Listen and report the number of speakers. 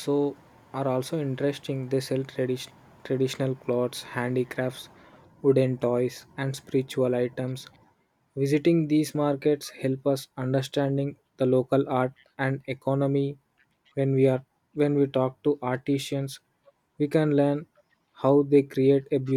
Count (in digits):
1